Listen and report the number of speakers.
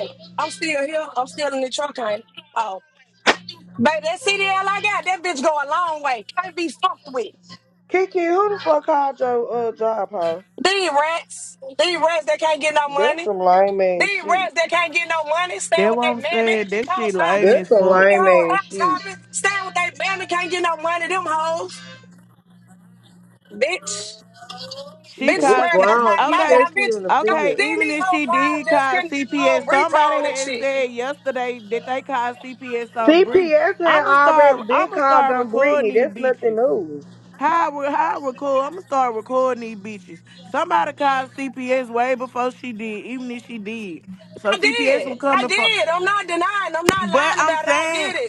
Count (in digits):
3